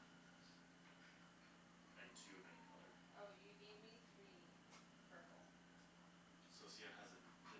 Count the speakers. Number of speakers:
2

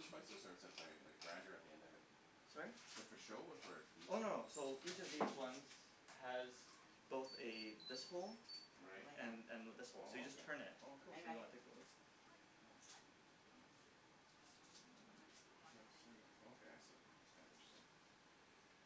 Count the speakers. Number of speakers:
2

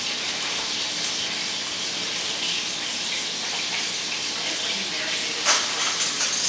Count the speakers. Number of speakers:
1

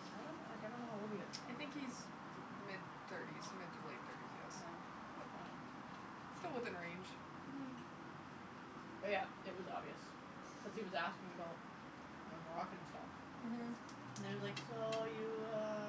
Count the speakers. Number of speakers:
2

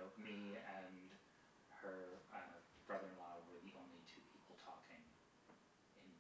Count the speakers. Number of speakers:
1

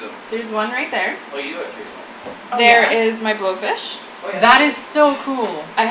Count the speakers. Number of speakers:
3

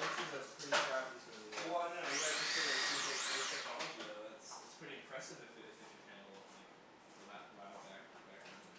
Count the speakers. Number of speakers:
2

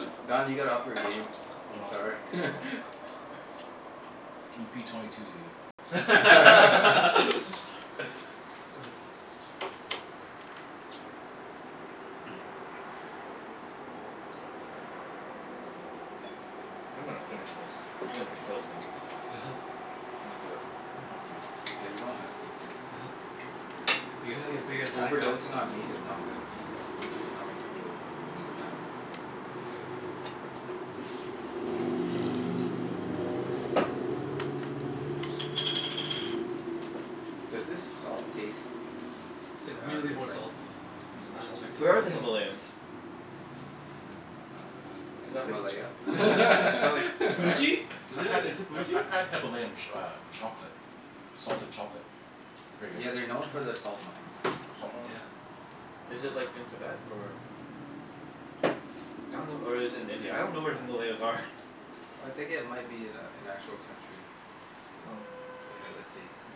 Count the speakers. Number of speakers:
4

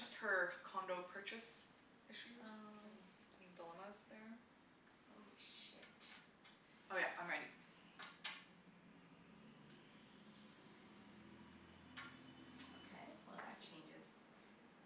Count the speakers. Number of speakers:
2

